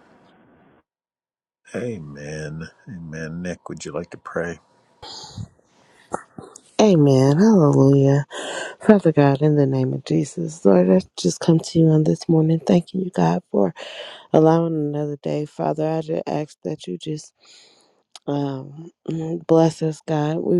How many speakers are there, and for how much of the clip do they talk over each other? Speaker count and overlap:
two, no overlap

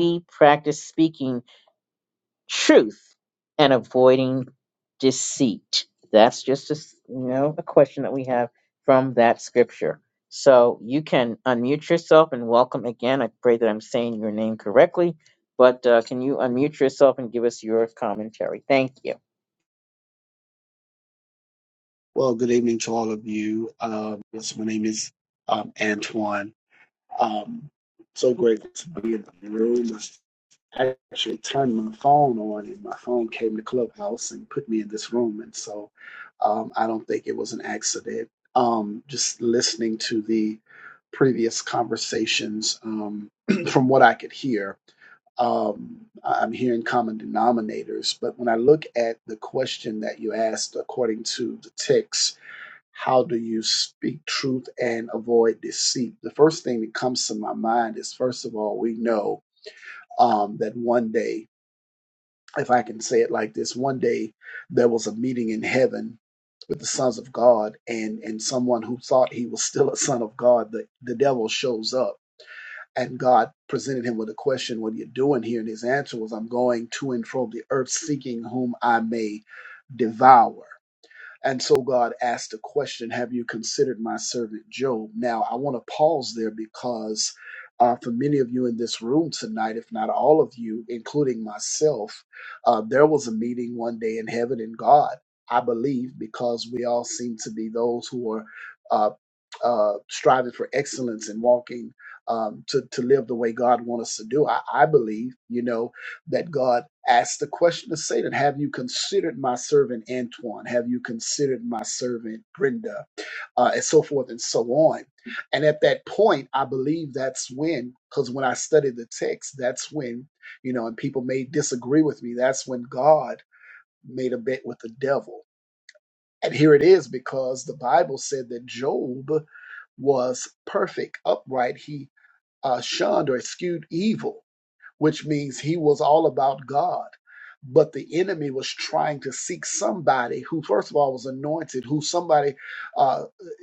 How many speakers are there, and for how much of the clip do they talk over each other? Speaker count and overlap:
two, no overlap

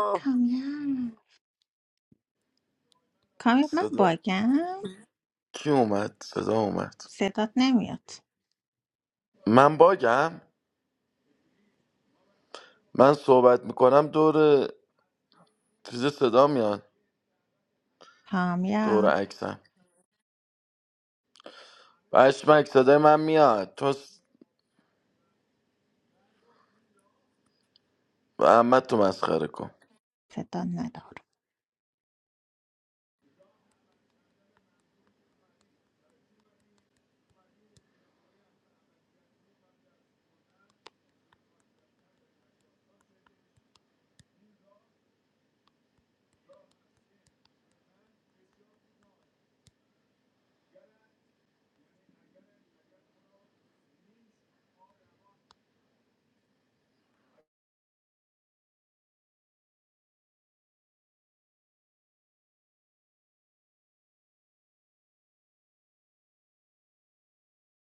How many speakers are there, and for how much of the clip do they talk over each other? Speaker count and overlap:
two, about 1%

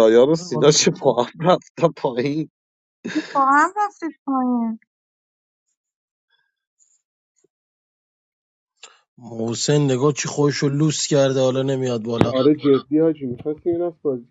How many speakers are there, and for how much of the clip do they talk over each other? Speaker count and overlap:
four, about 3%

